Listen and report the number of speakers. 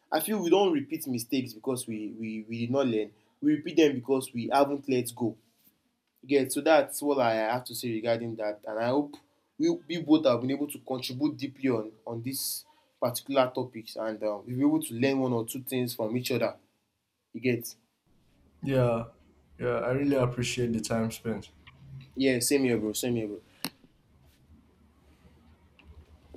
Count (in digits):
2